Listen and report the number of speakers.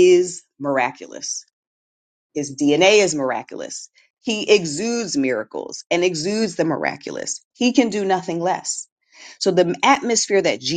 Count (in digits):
1